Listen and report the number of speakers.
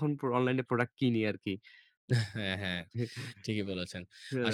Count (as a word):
two